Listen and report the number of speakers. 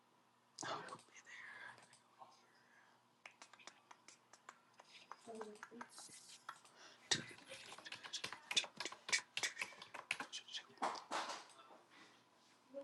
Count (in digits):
0